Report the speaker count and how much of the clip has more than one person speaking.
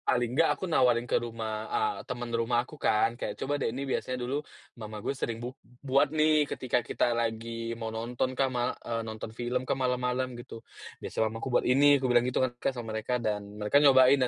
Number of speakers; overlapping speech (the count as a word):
one, no overlap